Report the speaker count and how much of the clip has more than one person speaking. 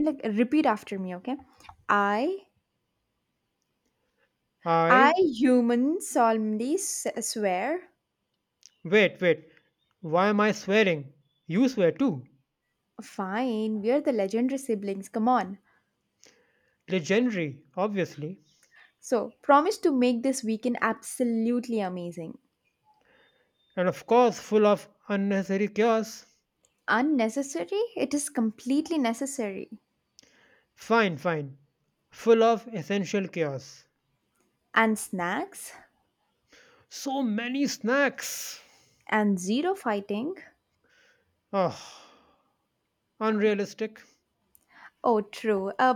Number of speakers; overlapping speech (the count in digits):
2, about 1%